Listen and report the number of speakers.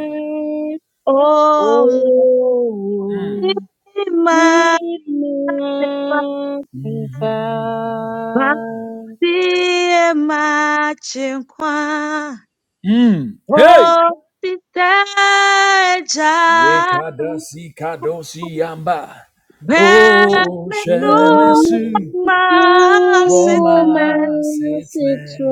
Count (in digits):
3